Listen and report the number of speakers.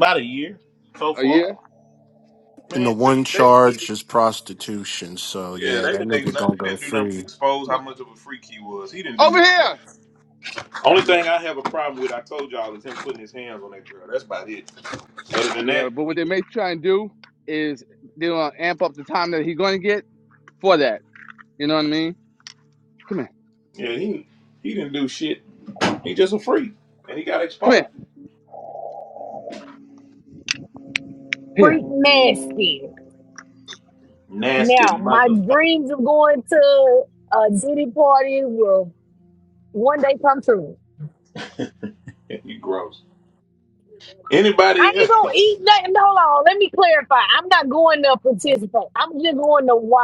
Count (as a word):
four